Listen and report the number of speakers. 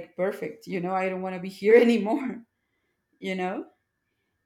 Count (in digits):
1